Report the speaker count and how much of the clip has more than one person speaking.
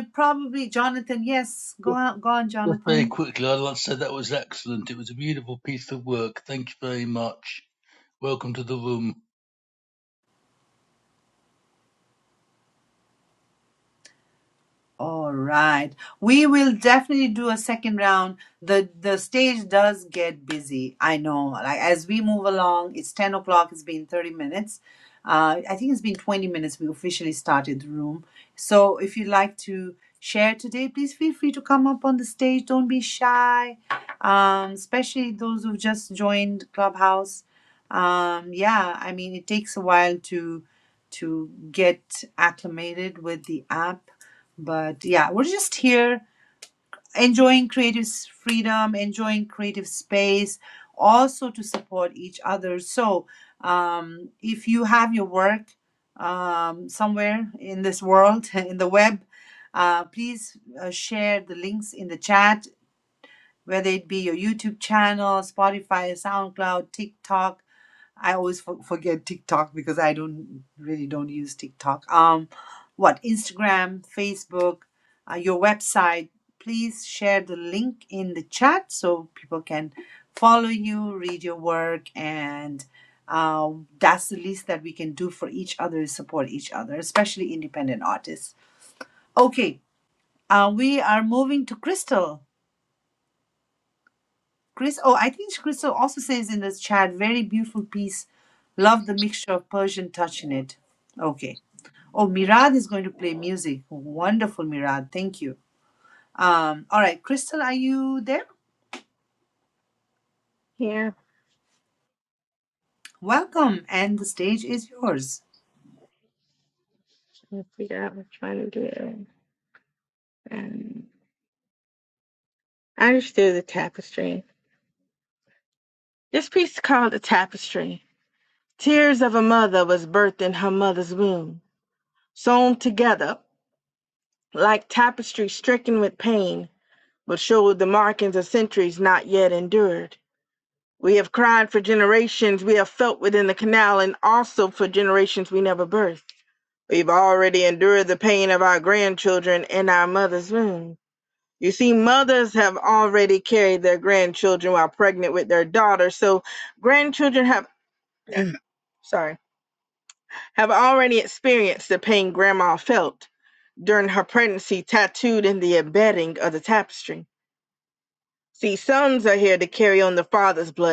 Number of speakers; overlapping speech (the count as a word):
three, under 1%